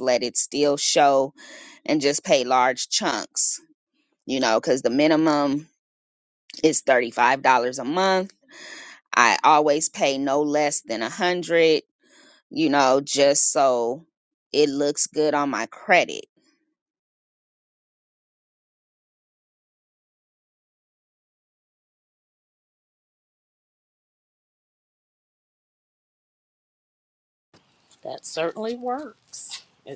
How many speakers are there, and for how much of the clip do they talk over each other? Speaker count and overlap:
2, no overlap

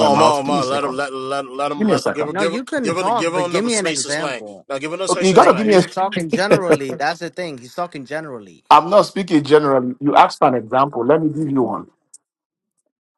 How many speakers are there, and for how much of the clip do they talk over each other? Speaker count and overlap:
3, about 36%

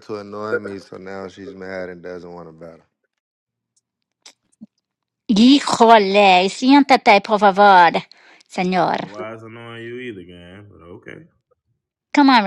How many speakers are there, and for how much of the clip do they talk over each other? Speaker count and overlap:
3, about 1%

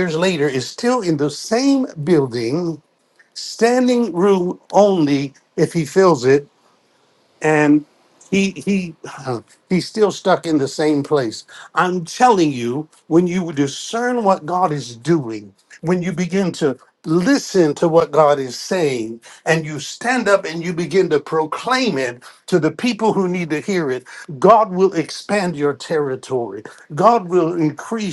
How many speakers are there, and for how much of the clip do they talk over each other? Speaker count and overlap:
1, no overlap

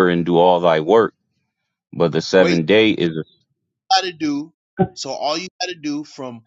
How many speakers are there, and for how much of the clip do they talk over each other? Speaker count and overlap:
2, about 4%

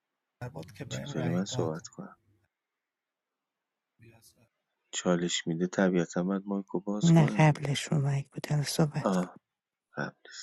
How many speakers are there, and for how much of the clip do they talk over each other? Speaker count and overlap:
3, about 15%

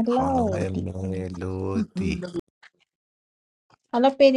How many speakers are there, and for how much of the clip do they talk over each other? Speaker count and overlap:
2, about 20%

